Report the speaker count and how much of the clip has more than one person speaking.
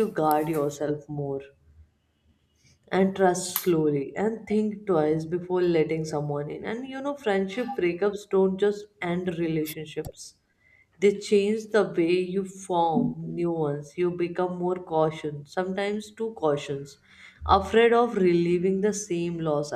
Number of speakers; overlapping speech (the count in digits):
1, no overlap